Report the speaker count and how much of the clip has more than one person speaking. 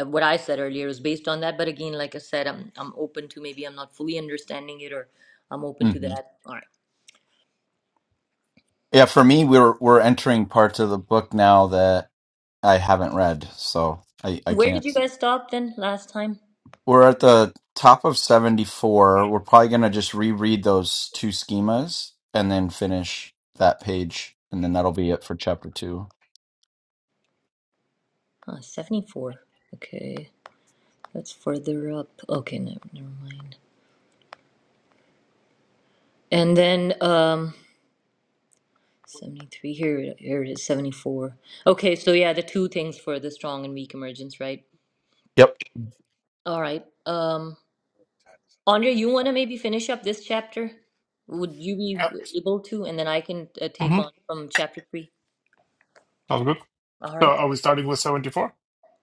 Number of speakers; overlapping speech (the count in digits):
3, about 2%